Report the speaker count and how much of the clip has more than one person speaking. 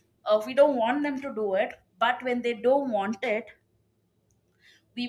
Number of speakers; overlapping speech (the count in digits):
1, no overlap